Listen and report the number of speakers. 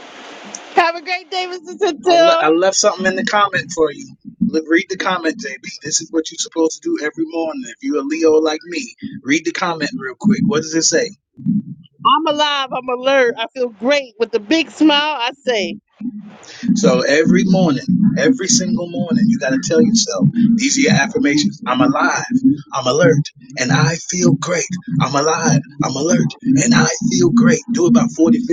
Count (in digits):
2